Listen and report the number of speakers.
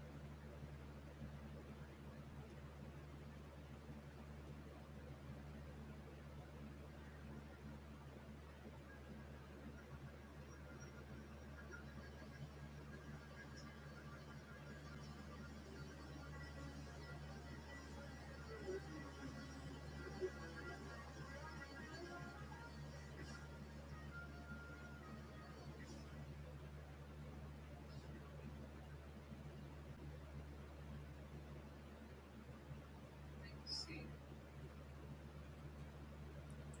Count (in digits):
0